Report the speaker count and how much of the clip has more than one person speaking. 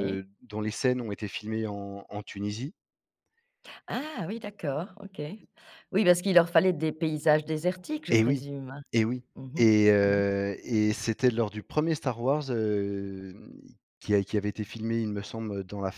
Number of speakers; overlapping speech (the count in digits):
2, about 5%